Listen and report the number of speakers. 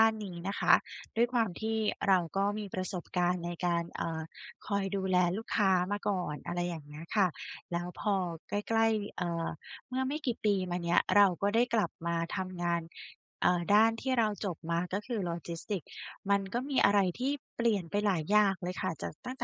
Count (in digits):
1